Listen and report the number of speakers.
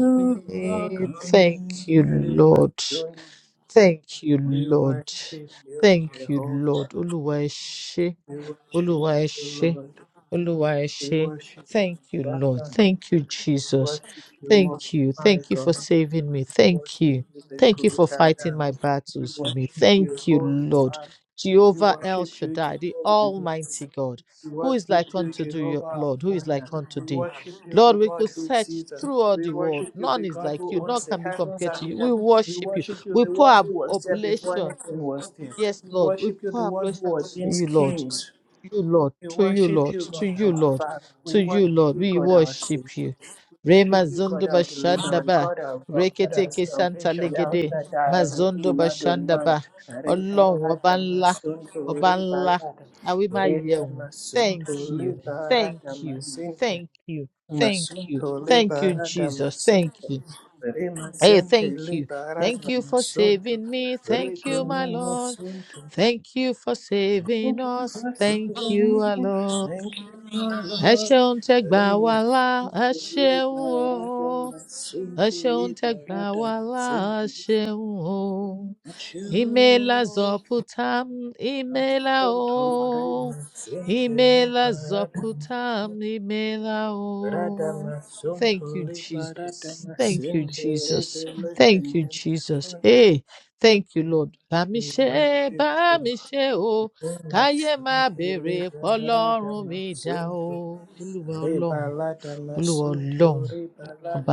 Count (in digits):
2